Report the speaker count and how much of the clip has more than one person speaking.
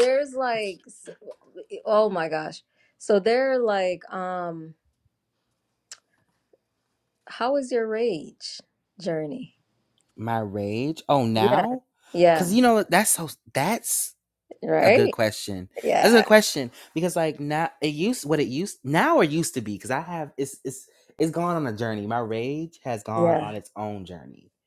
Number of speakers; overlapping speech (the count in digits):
2, about 6%